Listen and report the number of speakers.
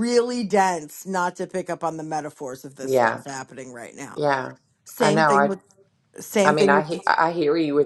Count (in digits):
2